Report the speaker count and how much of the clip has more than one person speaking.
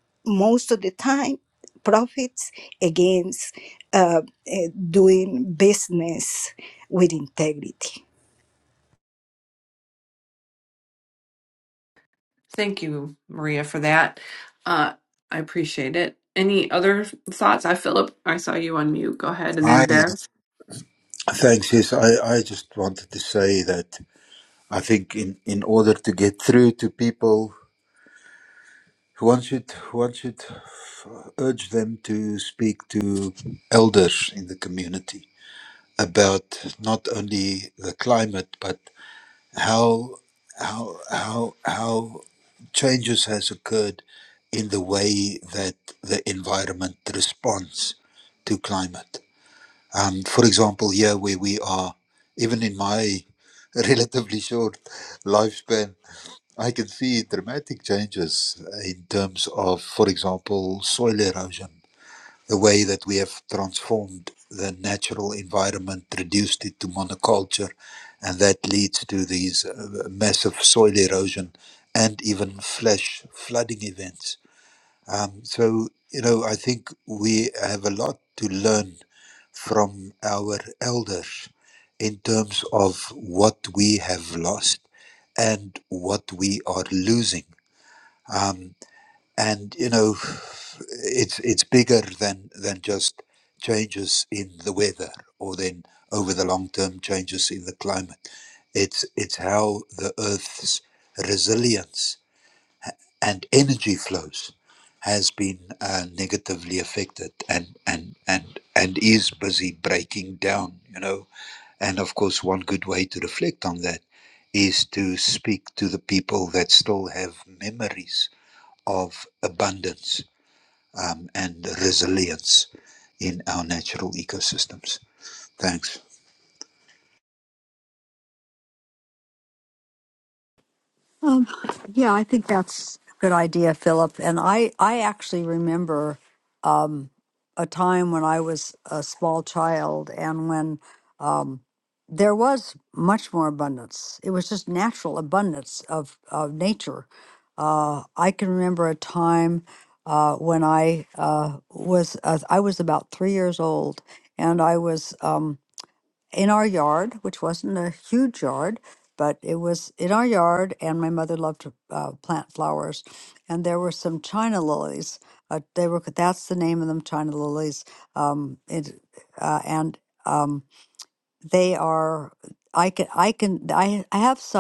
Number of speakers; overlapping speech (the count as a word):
four, under 1%